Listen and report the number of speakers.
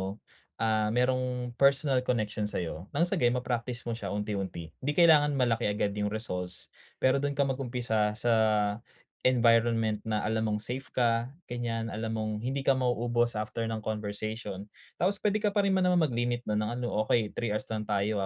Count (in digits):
1